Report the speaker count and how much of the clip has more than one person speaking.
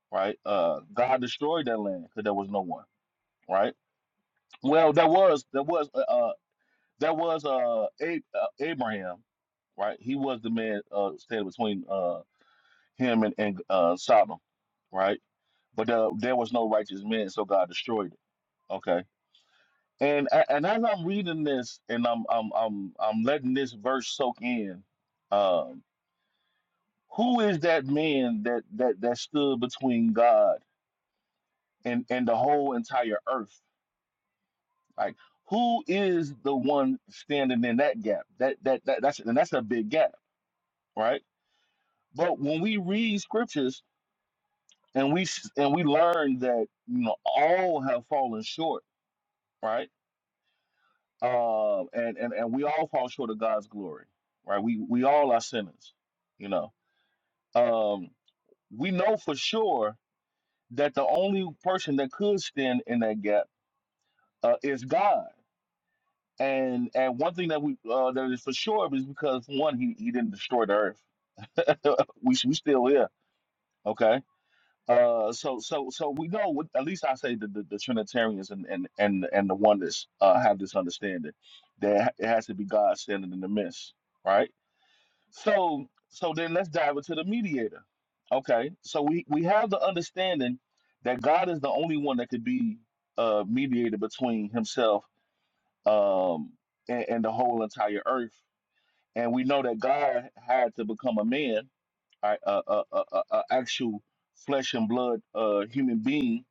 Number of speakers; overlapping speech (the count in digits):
1, no overlap